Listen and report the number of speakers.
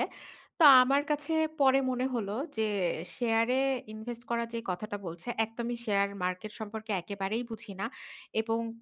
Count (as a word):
one